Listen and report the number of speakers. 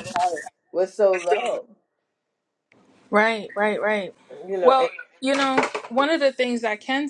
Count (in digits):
2